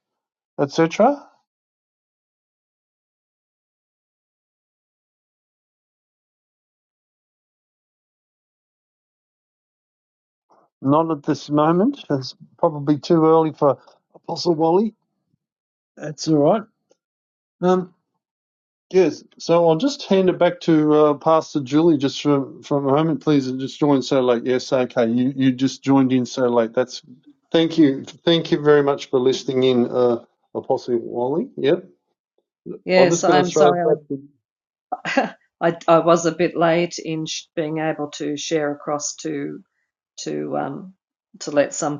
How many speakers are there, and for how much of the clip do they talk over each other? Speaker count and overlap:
two, about 2%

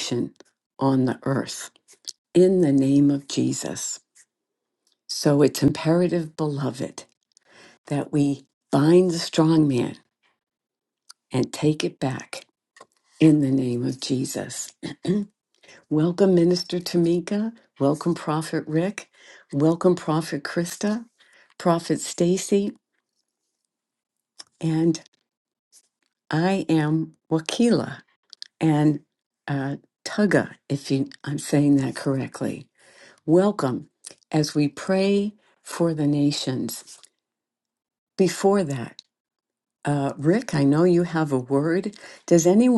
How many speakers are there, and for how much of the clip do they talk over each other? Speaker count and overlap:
one, no overlap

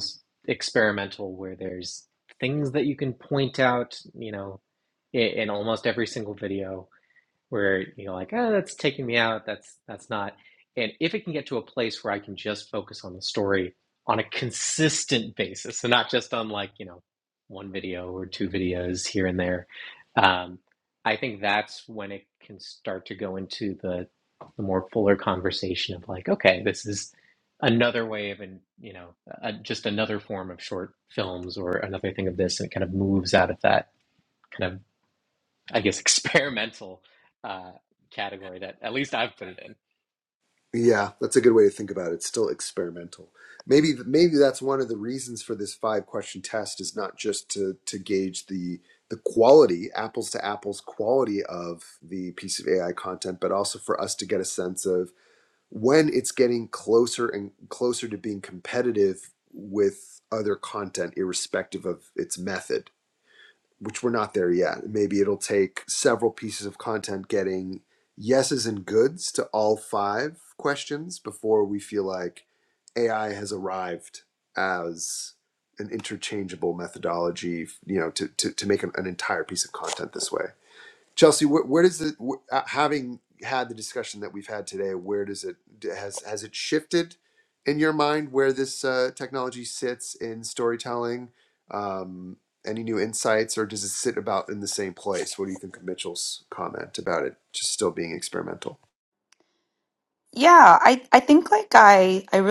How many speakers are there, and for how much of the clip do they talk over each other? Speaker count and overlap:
three, no overlap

